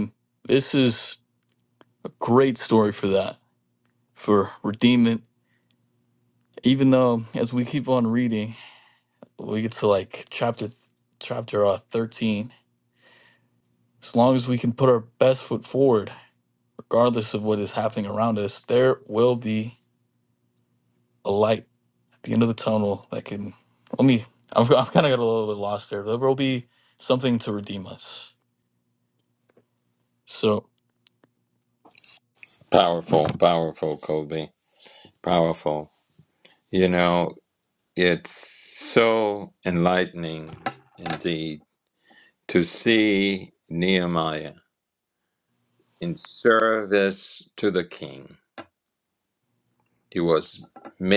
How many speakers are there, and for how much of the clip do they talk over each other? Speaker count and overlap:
2, no overlap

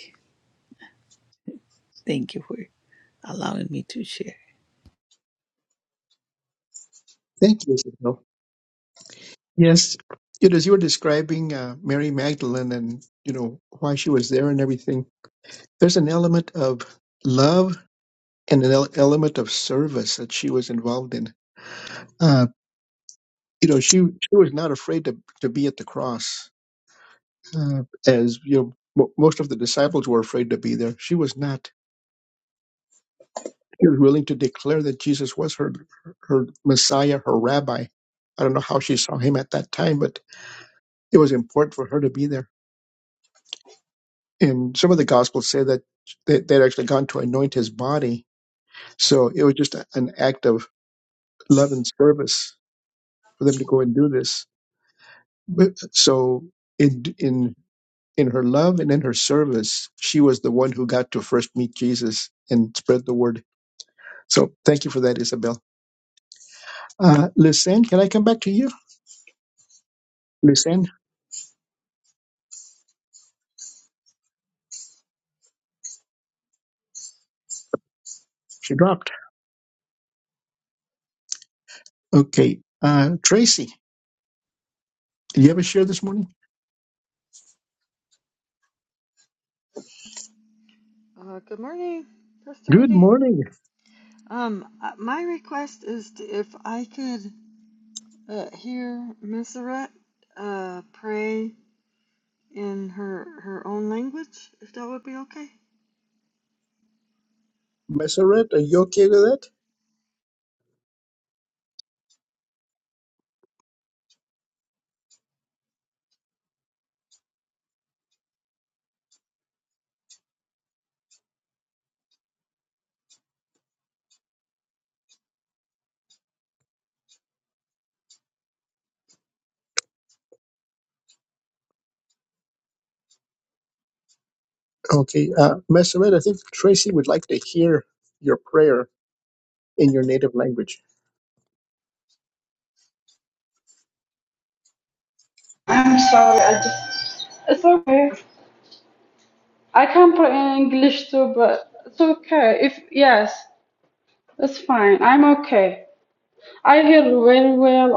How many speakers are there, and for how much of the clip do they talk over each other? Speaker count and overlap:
4, under 1%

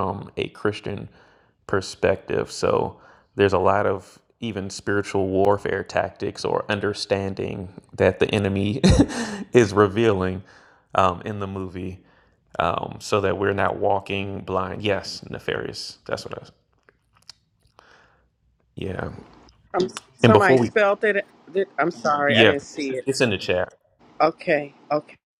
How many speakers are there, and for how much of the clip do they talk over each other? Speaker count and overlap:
2, about 3%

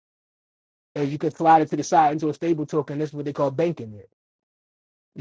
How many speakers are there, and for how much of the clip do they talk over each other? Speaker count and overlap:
1, no overlap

